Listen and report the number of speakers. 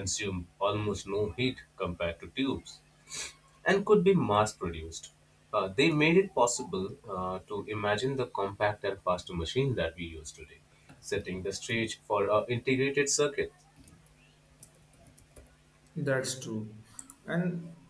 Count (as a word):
two